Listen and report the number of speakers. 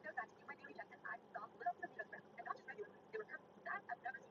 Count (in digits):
0